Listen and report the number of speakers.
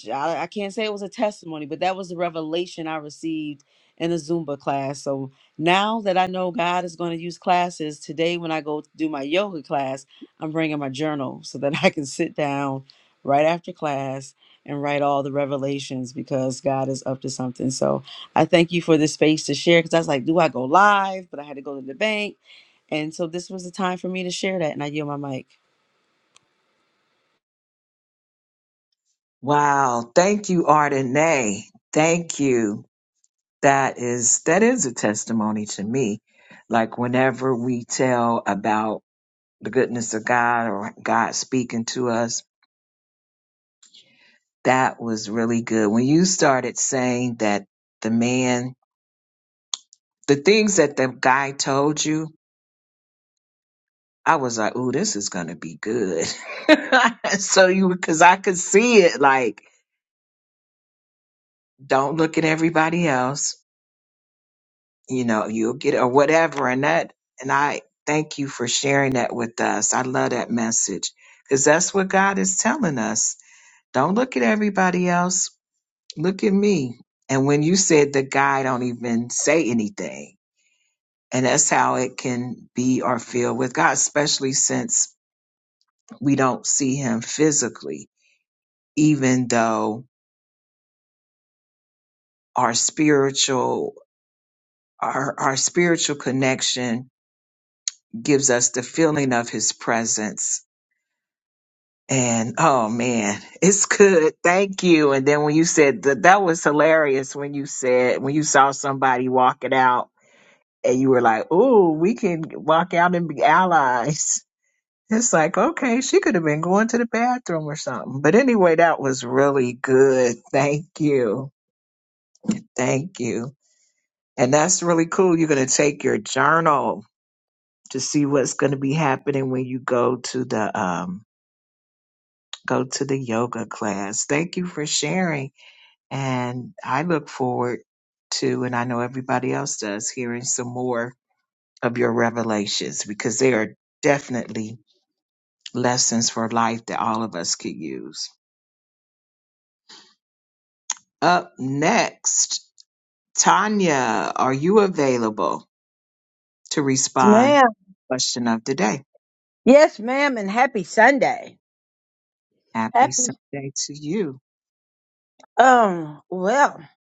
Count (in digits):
3